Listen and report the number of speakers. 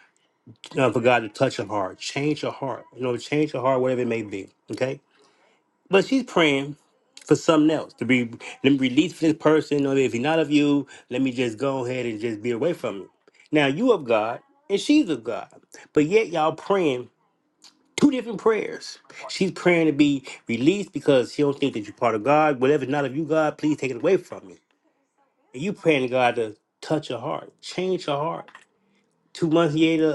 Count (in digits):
1